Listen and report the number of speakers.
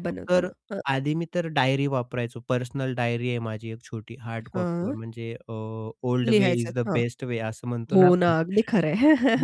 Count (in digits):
2